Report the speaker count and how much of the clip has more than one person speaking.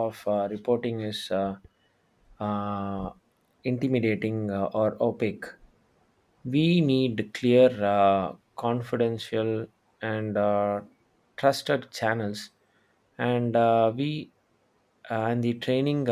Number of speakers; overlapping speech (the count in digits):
1, no overlap